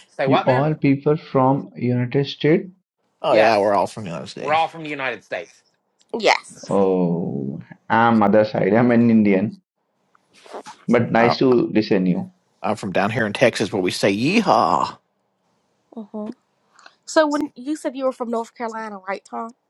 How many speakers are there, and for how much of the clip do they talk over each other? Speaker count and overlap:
4, about 4%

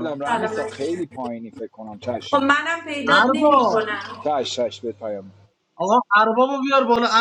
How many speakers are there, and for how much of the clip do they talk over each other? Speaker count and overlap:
3, about 25%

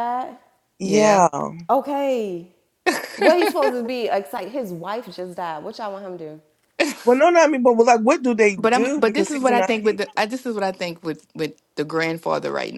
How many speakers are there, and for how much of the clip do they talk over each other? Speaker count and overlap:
3, about 14%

